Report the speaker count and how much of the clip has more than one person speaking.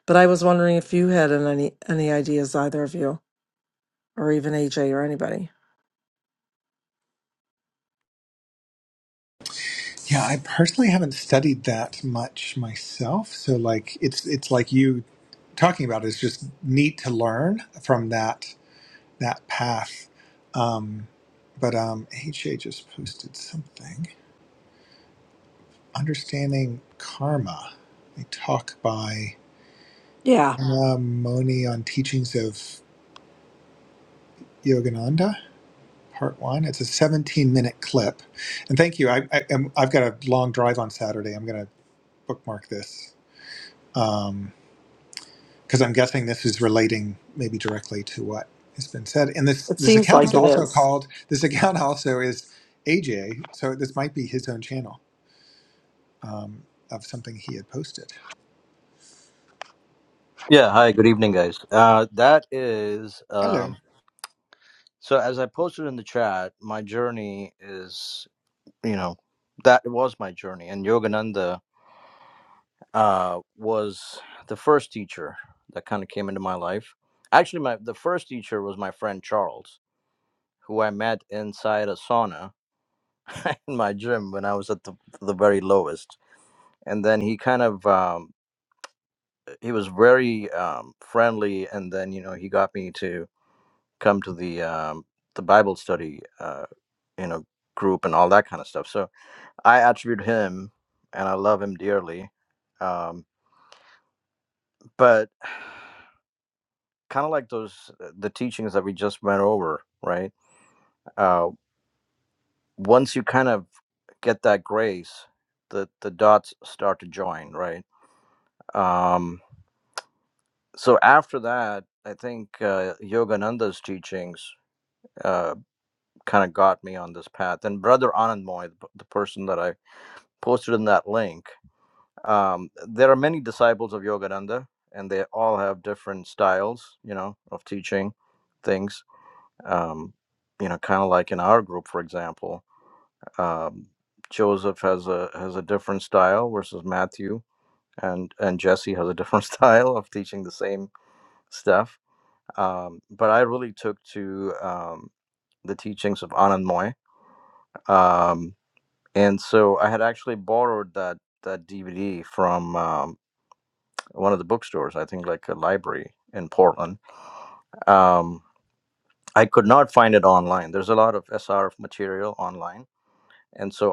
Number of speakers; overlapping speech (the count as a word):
three, about 1%